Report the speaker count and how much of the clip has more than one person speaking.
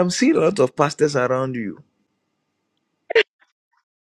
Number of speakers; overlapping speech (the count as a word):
one, no overlap